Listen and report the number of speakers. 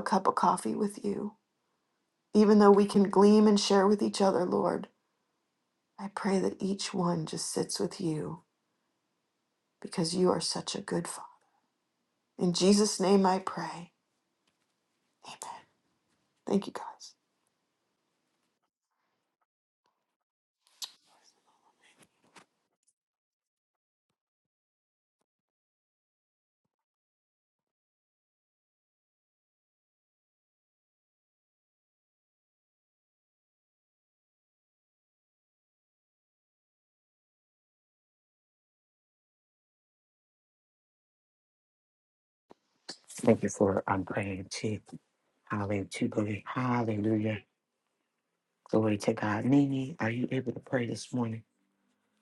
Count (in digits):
2